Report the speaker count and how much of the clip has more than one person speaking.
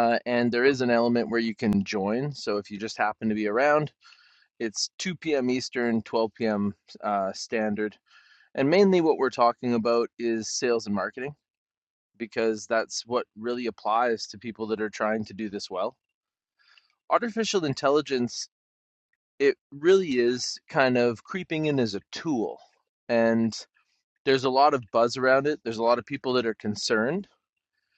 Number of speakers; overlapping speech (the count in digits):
1, no overlap